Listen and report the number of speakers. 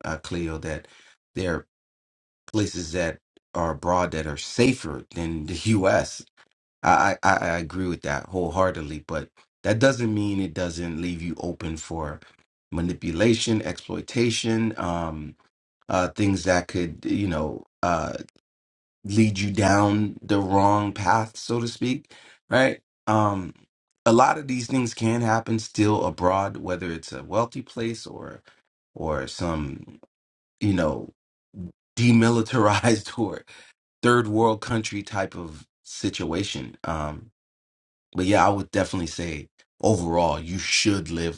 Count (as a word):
one